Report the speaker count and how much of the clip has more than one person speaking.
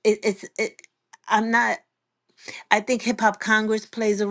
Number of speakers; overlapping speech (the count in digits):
1, no overlap